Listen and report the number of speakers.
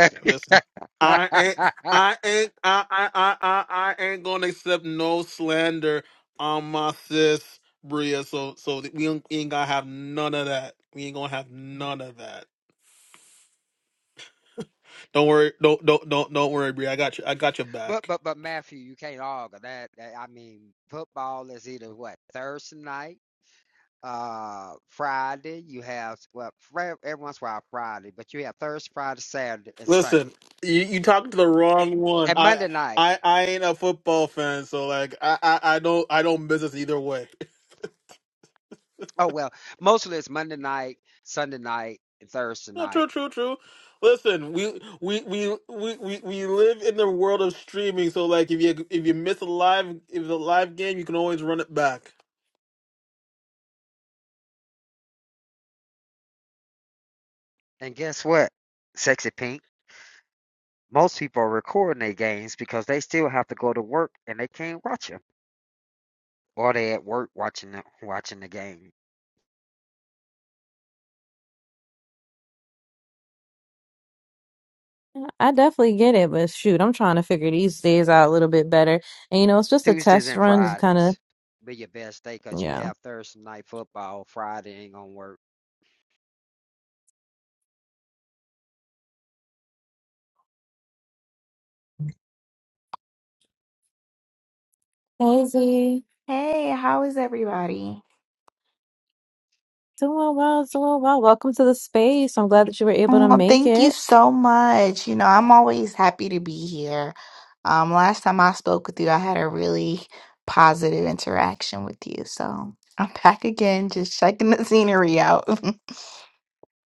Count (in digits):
4